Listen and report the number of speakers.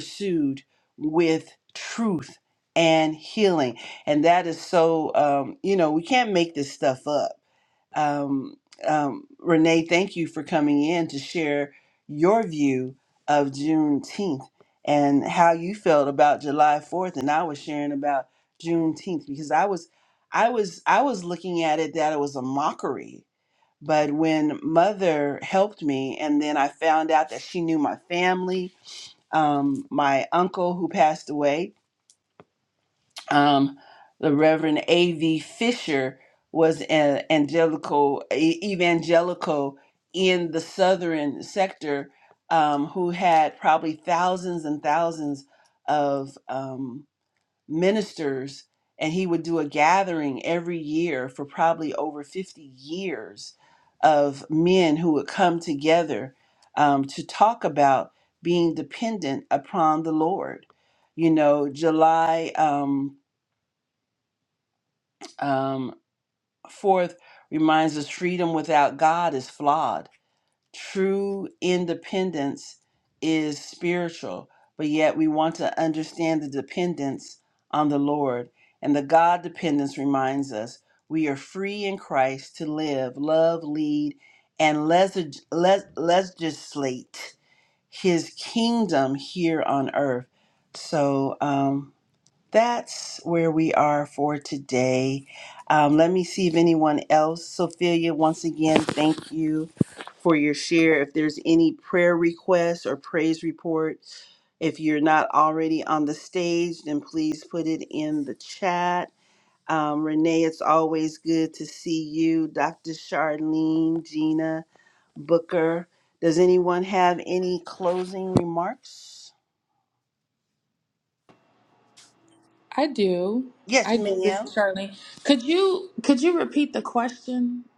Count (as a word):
two